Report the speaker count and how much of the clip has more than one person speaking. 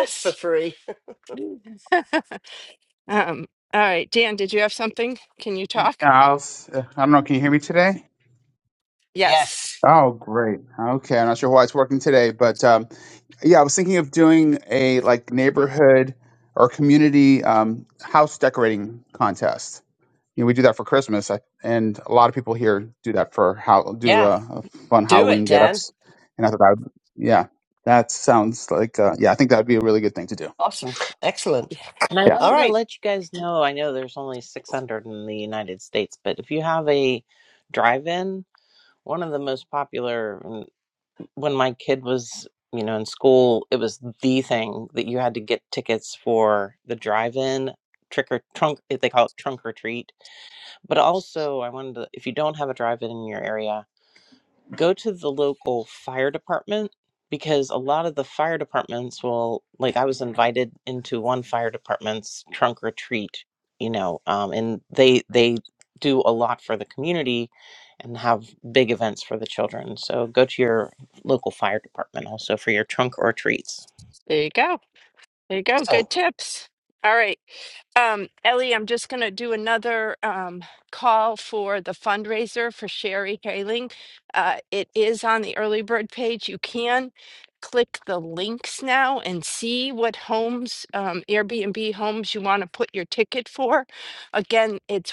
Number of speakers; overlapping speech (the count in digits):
4, about 2%